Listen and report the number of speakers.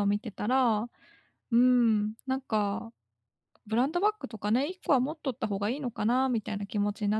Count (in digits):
1